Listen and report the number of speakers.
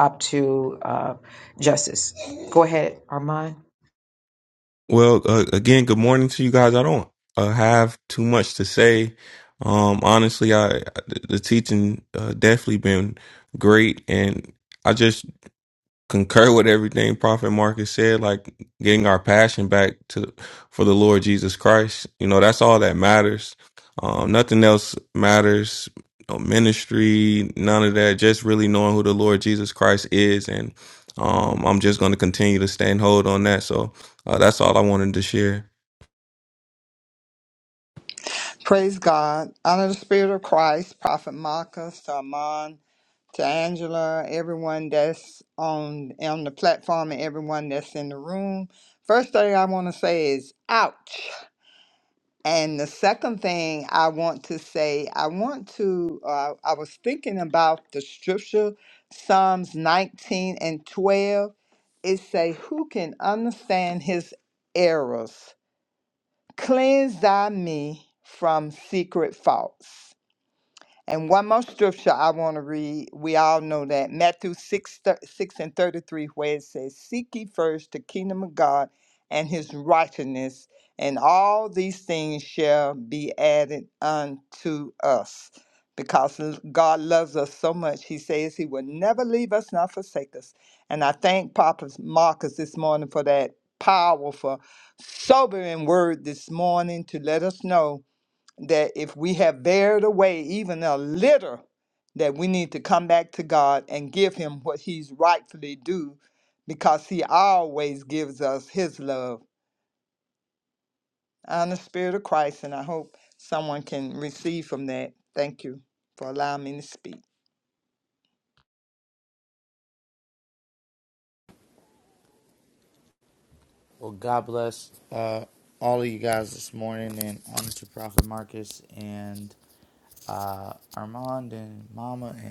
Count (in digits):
4